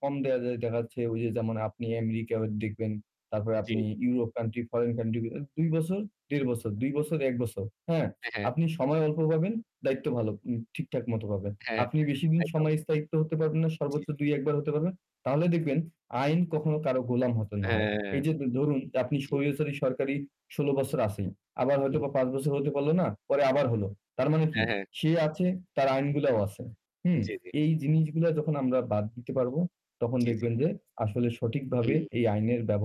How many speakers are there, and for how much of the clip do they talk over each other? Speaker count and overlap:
two, about 9%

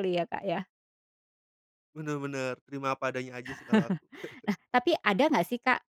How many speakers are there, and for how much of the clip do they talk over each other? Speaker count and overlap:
two, no overlap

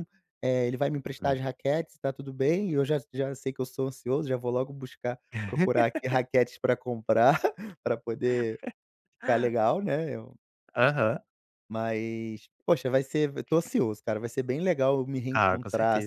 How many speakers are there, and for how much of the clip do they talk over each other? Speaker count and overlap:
two, about 5%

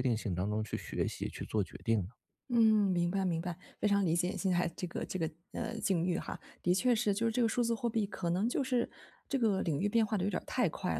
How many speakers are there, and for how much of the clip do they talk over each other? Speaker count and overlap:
two, no overlap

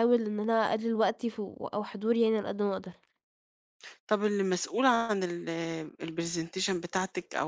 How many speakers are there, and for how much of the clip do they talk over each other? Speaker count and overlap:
two, no overlap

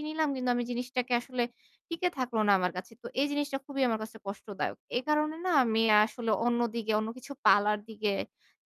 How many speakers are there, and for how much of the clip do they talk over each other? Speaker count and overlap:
one, no overlap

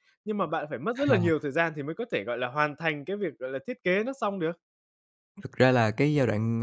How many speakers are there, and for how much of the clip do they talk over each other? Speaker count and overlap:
two, about 4%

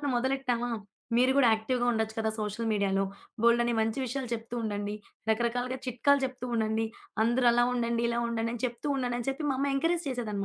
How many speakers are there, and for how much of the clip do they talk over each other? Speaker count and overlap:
one, no overlap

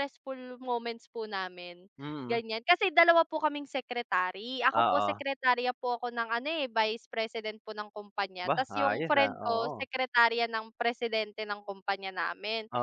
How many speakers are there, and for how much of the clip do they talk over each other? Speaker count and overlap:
two, about 15%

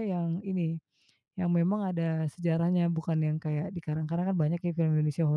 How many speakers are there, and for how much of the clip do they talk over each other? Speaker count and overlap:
one, no overlap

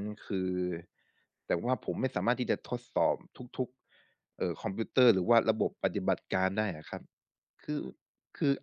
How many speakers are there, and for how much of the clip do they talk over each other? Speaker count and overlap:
one, no overlap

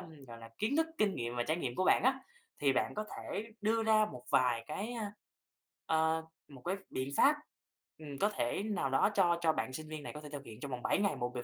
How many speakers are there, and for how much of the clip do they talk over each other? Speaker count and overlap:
one, no overlap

